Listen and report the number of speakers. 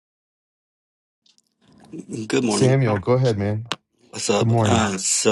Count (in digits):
2